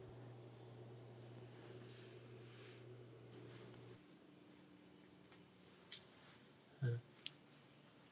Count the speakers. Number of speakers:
zero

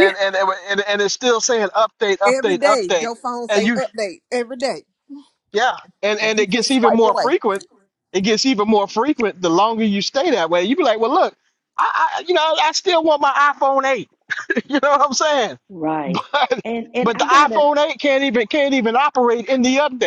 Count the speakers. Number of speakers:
three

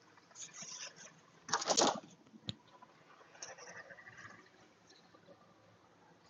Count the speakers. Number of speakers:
zero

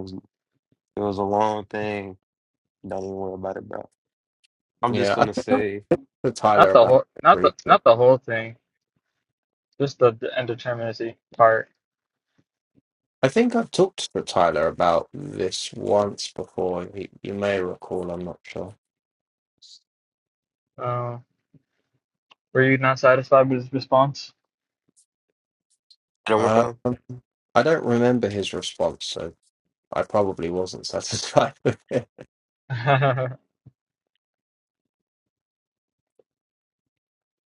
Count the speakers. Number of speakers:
three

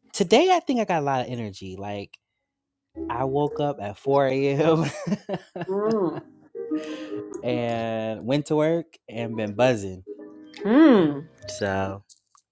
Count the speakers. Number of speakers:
two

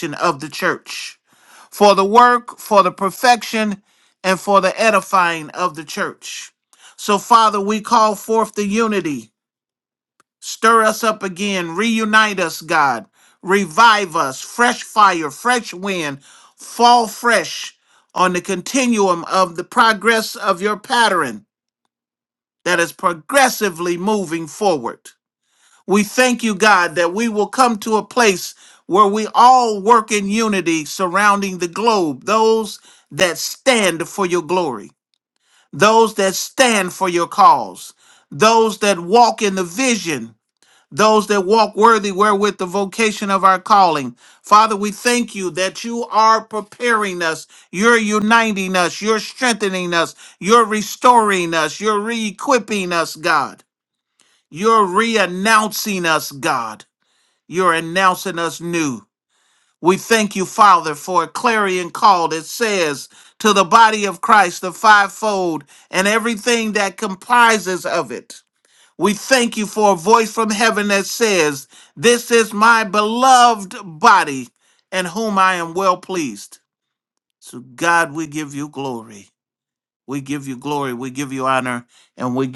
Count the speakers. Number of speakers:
one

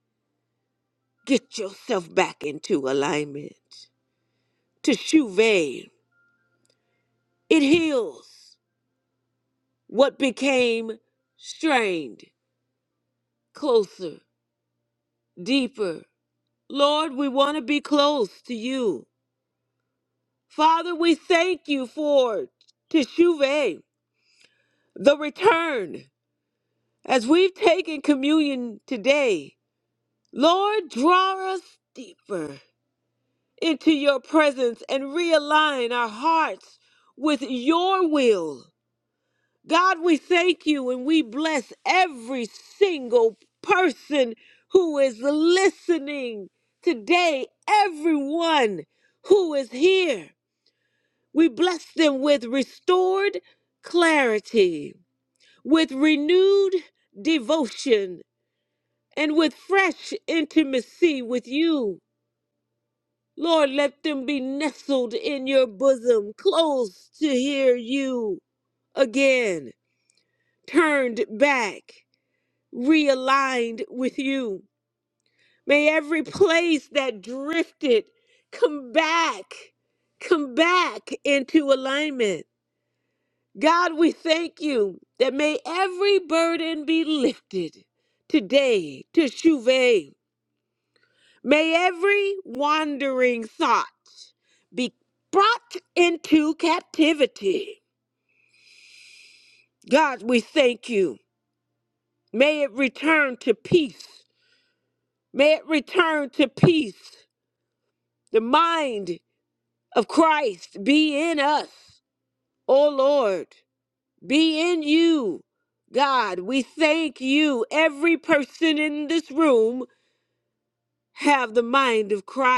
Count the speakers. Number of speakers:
one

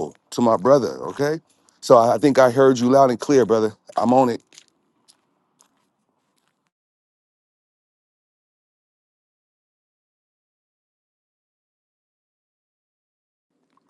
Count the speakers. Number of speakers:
one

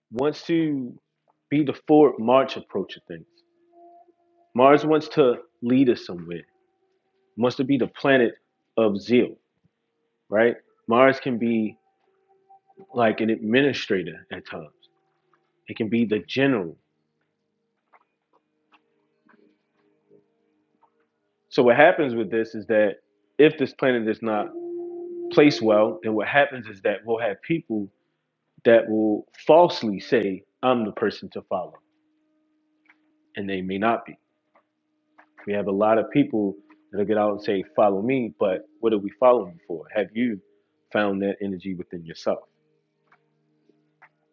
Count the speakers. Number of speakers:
one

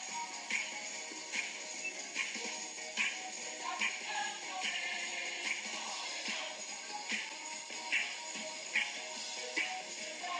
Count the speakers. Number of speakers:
zero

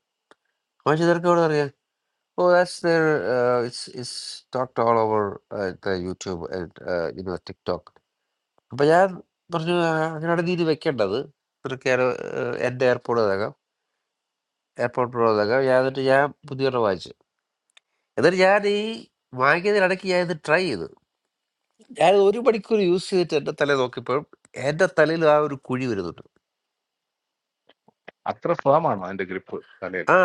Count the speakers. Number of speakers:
two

